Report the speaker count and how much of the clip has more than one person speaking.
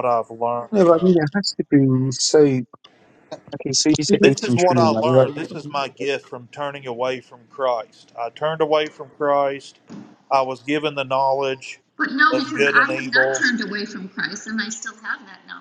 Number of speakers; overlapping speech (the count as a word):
three, about 17%